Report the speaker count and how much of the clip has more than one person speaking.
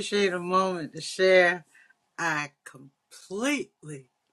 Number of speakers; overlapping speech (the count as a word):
one, no overlap